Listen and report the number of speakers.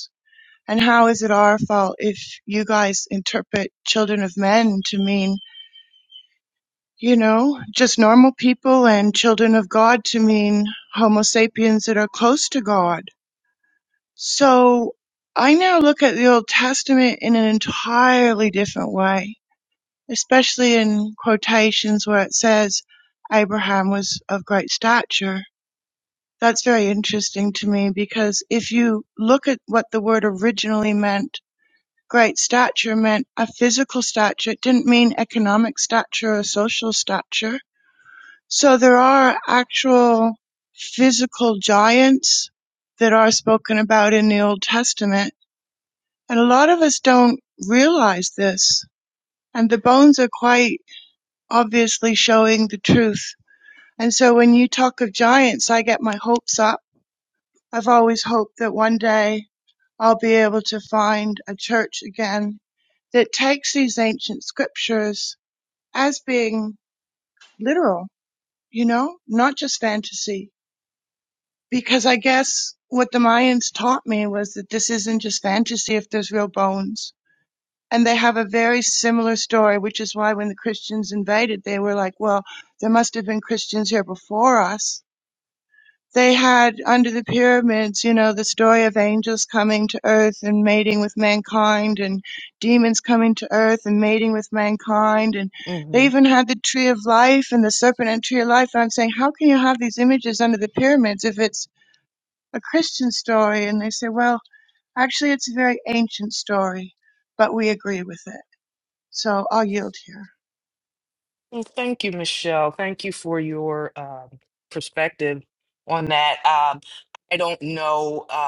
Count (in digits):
2